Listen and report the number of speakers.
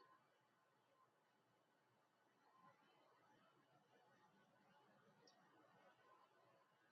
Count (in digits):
0